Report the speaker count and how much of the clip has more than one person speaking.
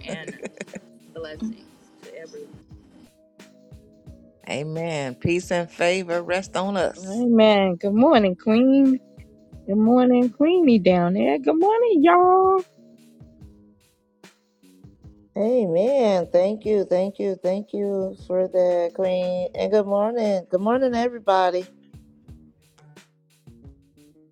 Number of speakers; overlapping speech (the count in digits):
4, no overlap